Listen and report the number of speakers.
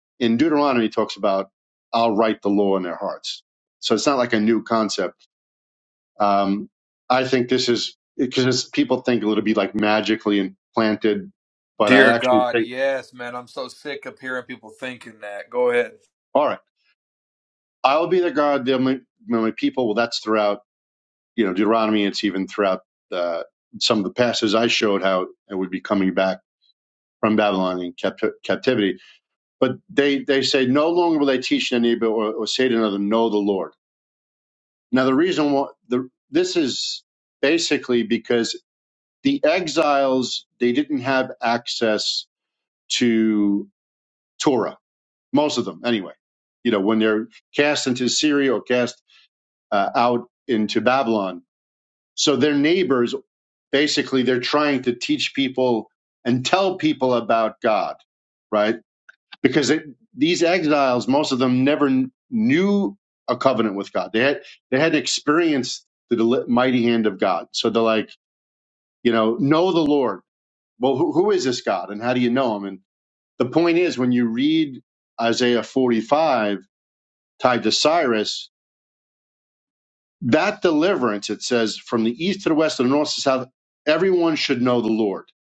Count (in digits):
2